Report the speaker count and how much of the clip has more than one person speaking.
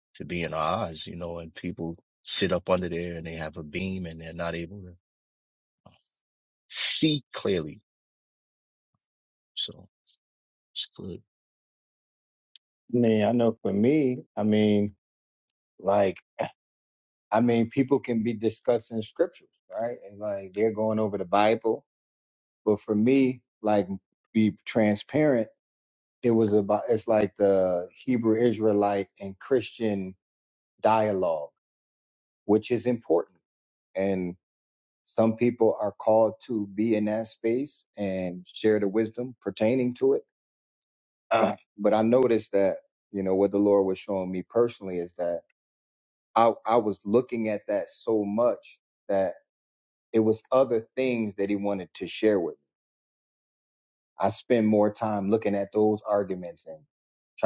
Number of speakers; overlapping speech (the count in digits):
2, no overlap